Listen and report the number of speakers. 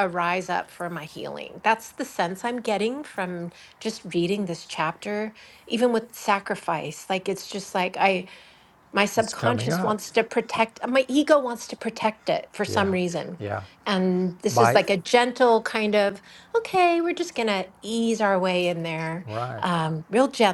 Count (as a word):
two